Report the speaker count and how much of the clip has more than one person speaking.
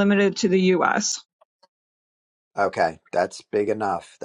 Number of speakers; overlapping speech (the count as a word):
two, no overlap